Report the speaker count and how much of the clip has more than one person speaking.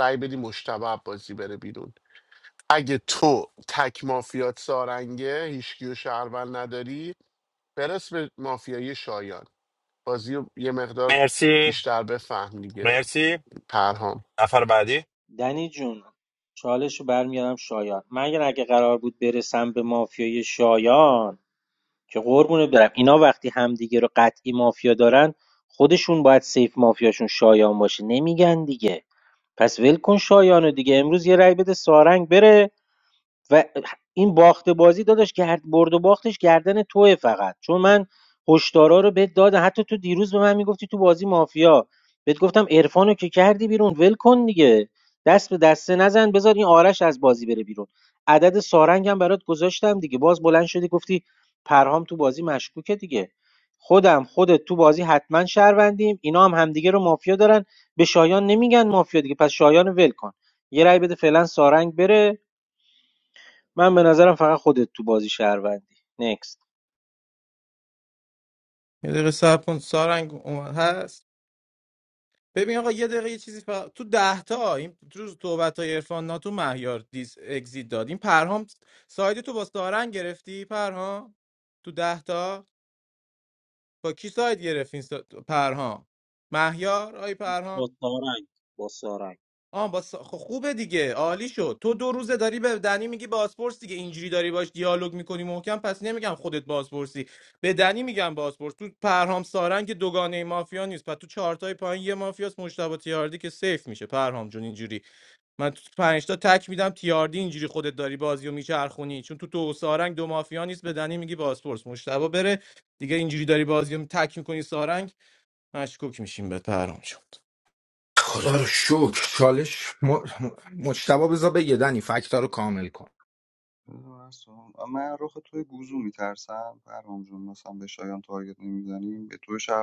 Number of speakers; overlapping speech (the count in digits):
6, under 1%